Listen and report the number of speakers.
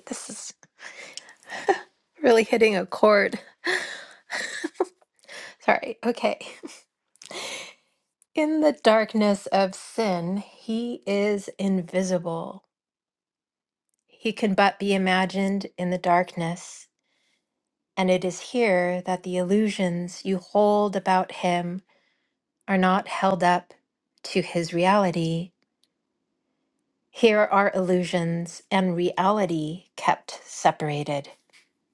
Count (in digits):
1